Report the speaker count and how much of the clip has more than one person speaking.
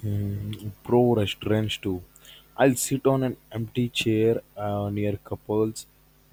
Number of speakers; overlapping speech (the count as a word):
one, no overlap